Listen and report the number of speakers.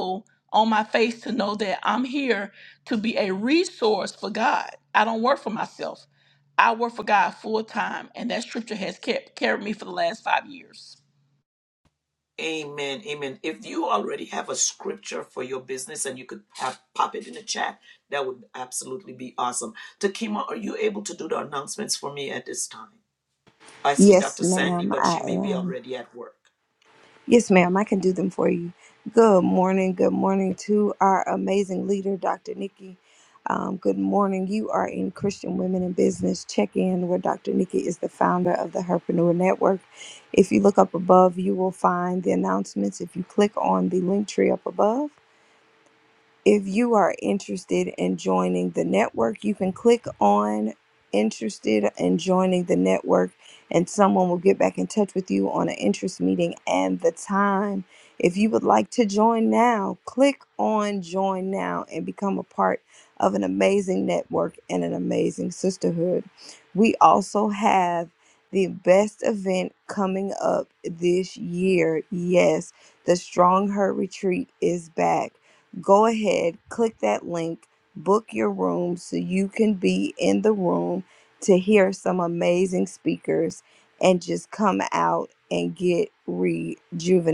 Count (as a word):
three